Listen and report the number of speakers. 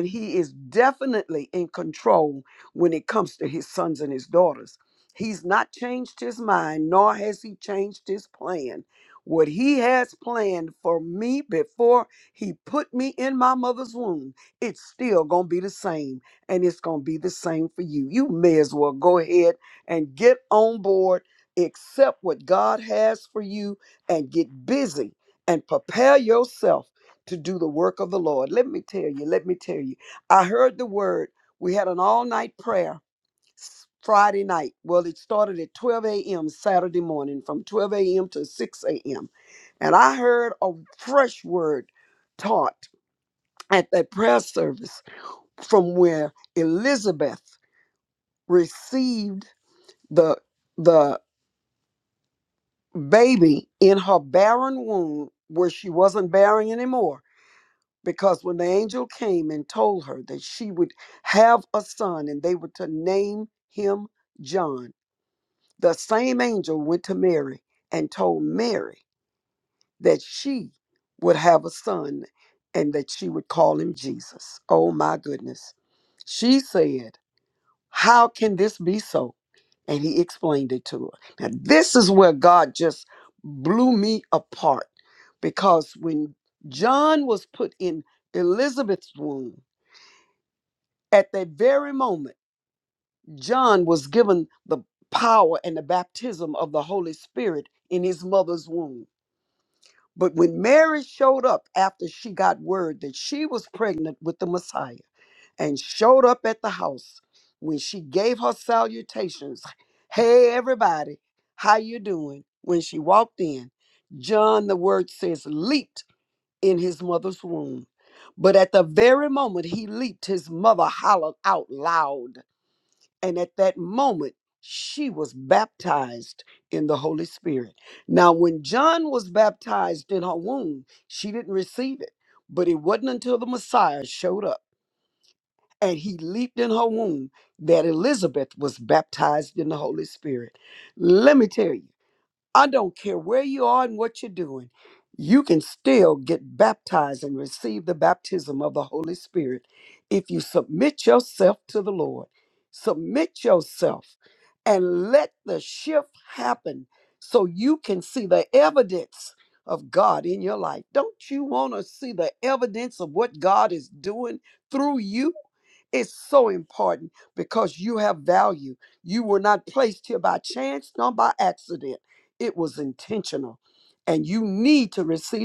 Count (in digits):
1